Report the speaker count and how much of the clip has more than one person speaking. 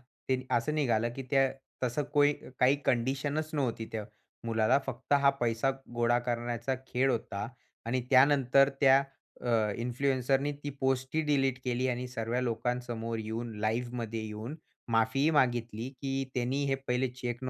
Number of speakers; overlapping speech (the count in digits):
1, no overlap